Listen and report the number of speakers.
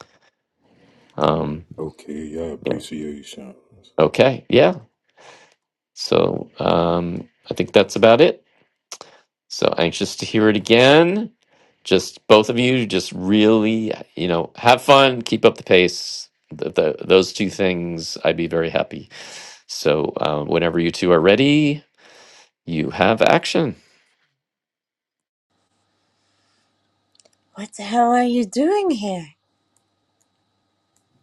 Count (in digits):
3